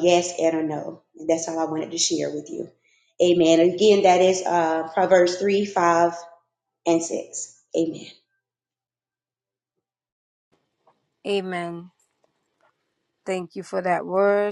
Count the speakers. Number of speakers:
two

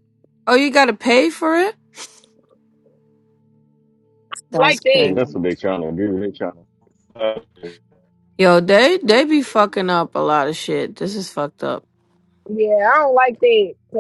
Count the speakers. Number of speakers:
three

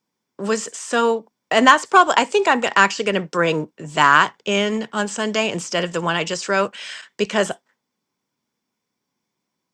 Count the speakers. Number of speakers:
one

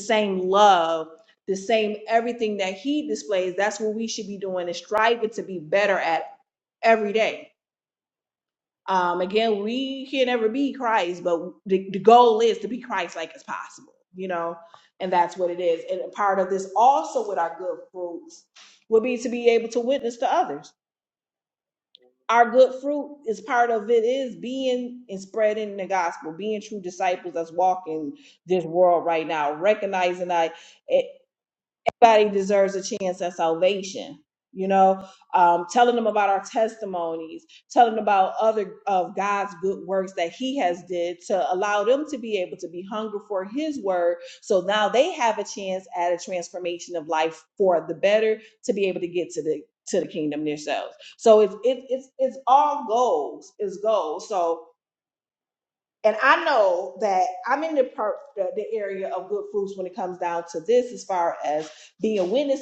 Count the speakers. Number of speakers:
one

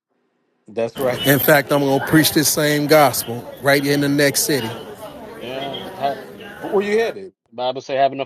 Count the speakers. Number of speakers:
three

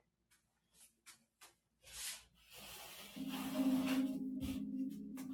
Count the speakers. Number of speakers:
zero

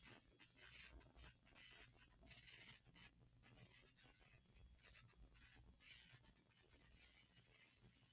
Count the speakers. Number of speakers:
zero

